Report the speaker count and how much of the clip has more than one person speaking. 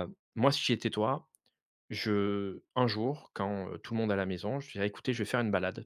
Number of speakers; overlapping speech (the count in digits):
1, no overlap